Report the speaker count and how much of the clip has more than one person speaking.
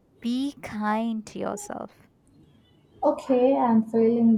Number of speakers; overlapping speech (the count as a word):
two, no overlap